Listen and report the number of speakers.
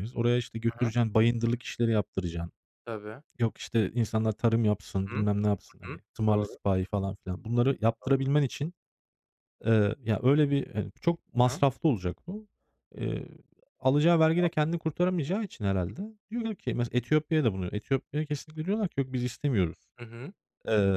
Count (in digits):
2